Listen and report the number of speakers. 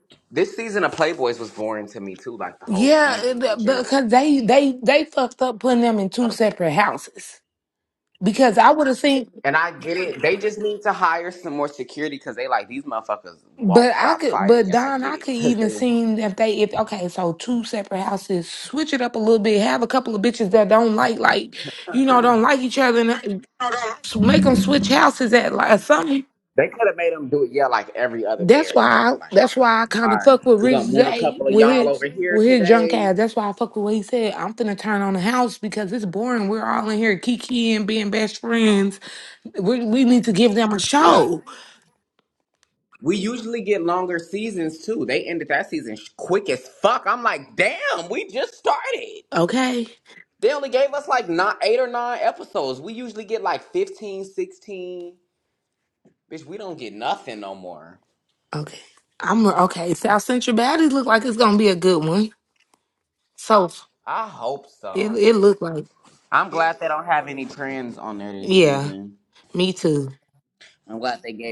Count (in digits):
2